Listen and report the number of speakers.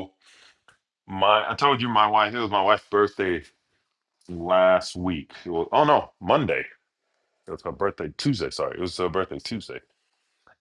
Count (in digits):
1